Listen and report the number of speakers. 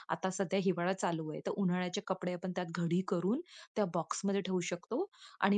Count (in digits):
1